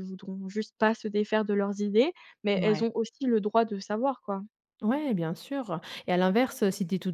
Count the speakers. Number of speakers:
two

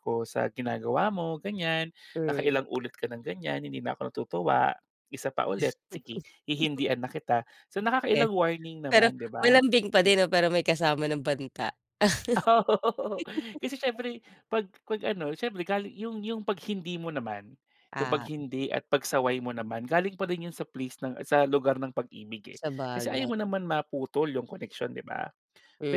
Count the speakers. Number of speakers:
two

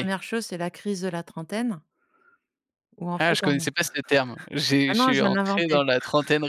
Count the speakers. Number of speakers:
two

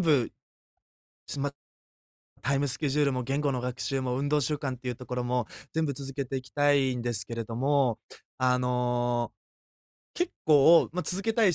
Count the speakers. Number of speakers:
one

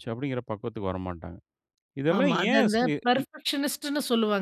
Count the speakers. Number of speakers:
two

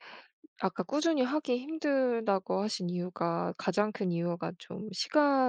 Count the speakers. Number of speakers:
one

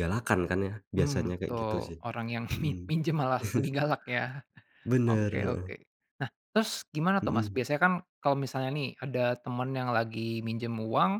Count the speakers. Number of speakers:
two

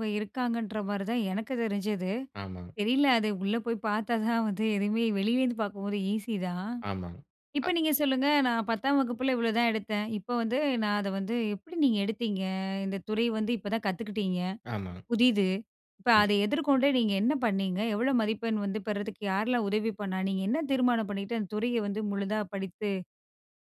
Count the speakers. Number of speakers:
two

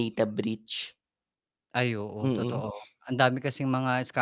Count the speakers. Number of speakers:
two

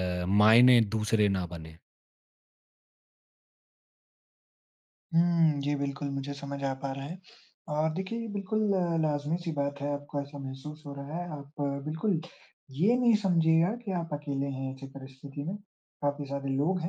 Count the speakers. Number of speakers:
two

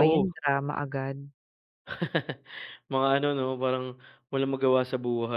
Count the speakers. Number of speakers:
two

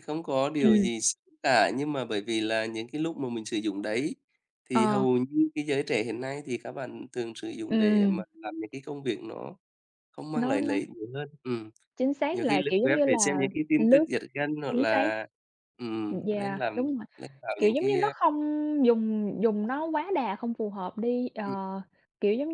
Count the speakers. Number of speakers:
two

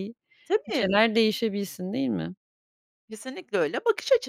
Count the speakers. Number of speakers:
two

